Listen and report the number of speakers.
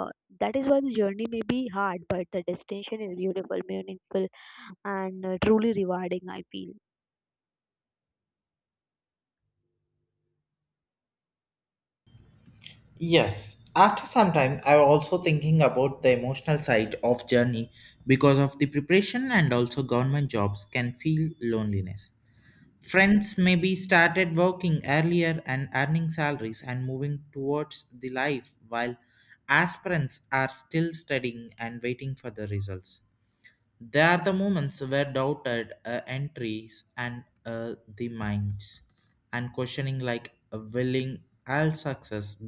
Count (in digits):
2